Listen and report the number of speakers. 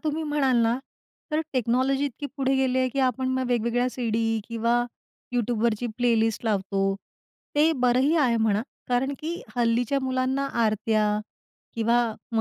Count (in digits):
1